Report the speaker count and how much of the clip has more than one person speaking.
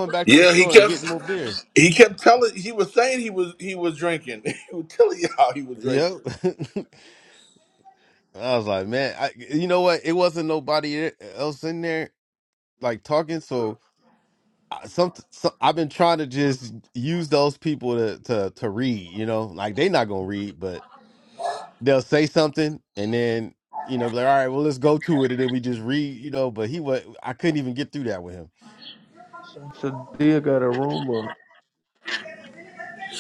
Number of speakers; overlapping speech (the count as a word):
three, about 3%